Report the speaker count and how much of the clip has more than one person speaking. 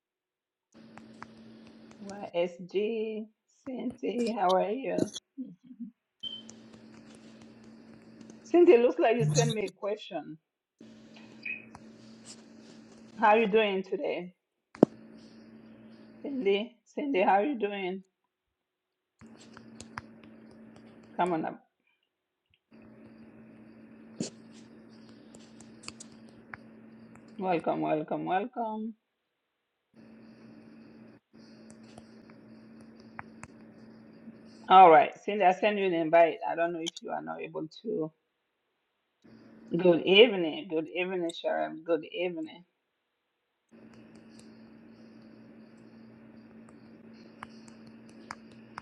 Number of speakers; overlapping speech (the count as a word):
one, no overlap